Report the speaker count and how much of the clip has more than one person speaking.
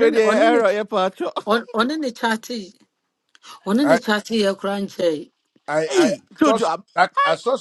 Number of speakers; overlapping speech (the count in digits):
3, about 26%